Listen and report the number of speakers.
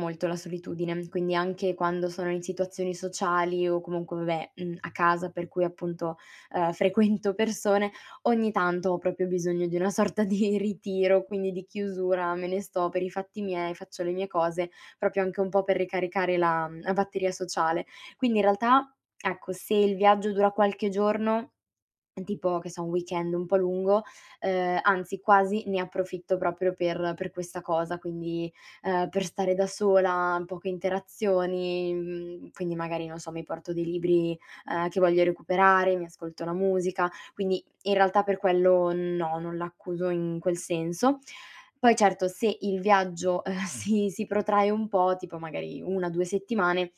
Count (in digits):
1